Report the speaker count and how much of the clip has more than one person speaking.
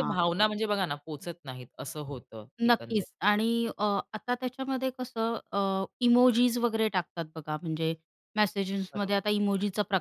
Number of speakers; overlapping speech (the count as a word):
two, about 8%